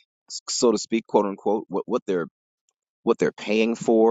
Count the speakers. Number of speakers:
1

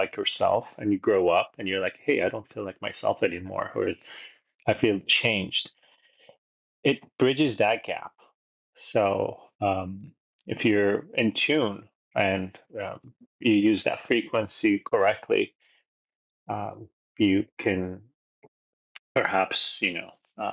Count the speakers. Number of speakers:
1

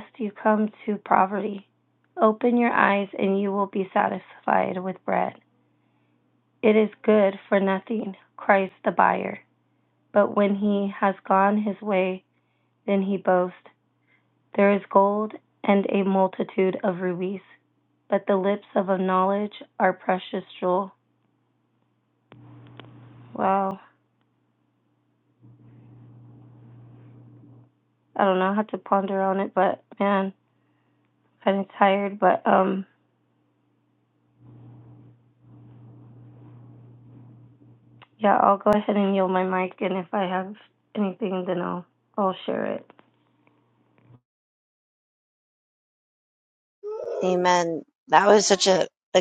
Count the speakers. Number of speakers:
2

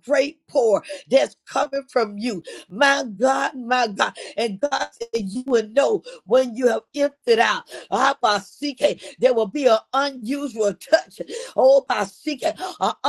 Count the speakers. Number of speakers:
1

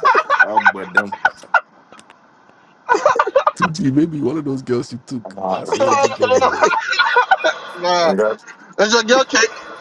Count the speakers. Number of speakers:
3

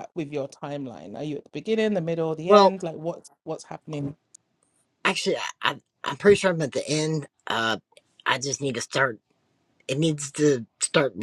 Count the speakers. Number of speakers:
2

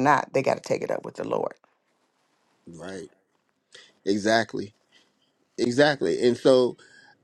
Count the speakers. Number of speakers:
2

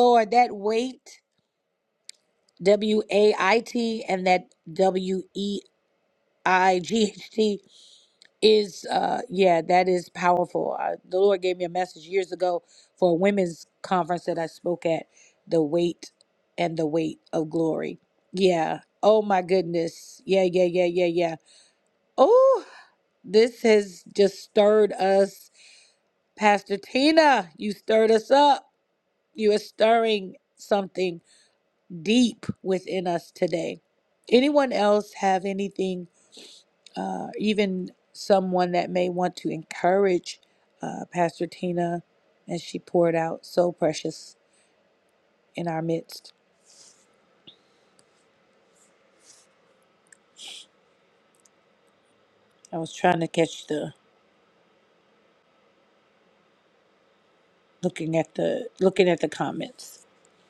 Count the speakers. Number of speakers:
1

